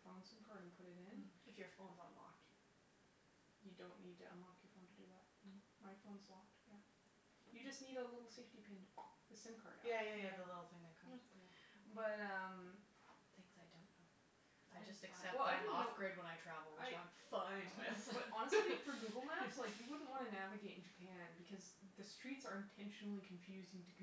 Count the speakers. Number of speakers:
two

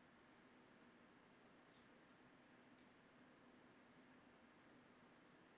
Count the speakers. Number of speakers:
zero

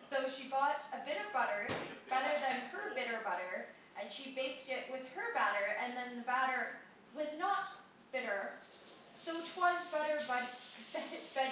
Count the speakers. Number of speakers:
one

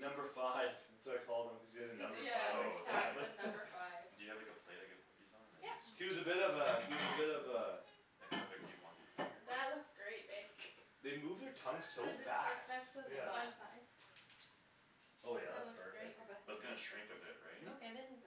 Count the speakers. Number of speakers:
four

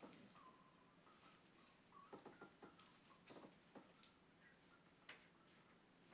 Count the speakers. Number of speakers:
zero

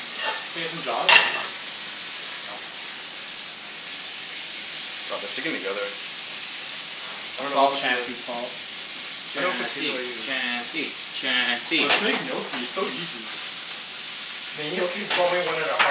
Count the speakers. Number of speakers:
four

